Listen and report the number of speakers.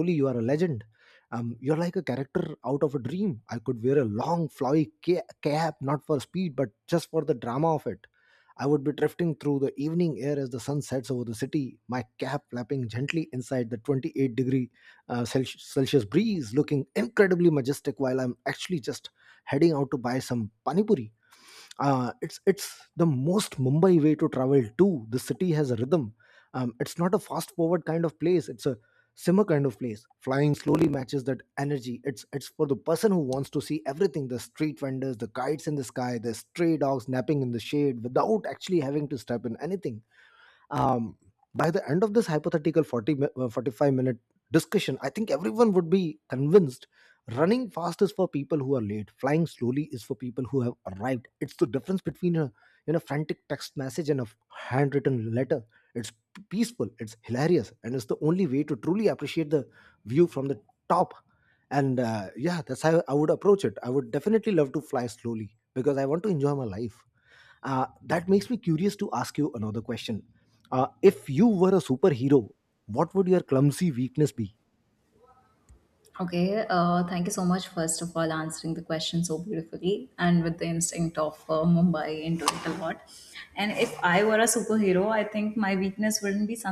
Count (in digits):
2